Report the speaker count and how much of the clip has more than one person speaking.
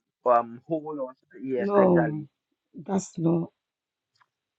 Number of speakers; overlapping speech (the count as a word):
two, about 14%